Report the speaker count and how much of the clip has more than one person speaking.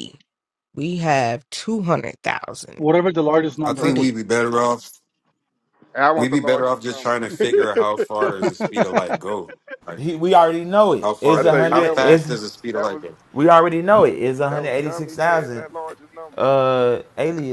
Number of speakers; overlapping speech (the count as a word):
five, about 30%